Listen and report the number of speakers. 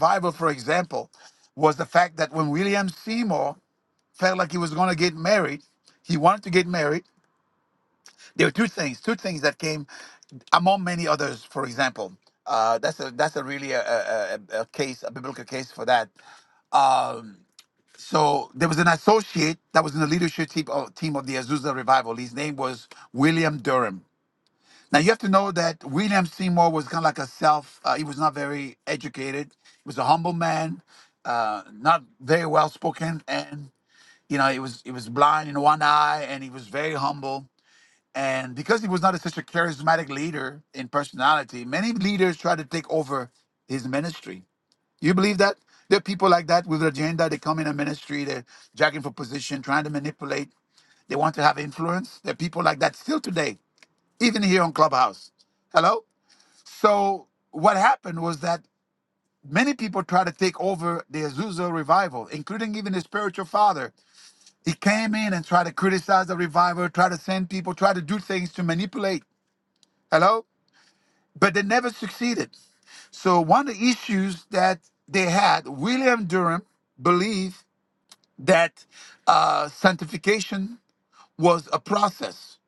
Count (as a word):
one